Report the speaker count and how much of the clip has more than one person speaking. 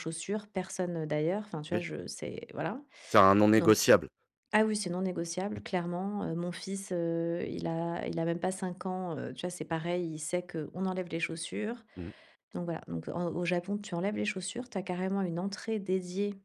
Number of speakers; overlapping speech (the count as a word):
two, about 2%